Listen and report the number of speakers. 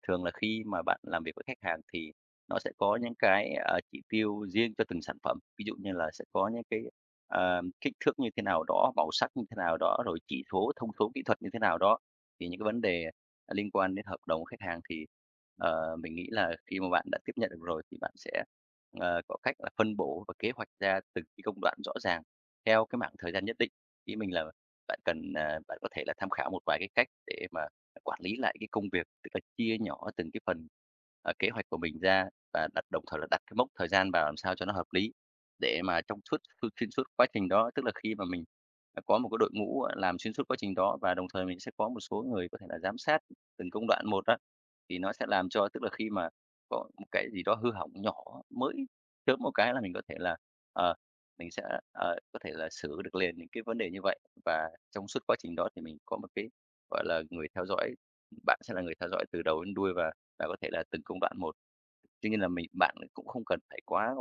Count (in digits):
1